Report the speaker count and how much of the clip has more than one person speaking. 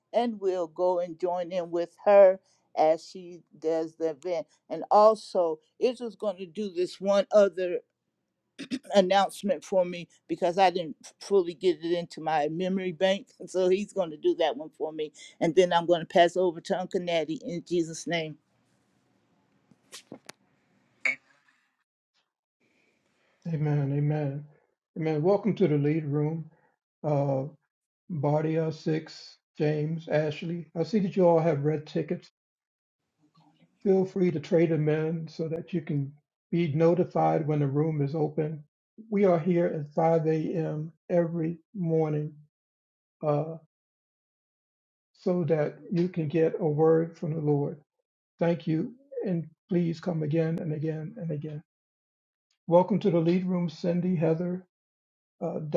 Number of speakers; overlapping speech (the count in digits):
2, no overlap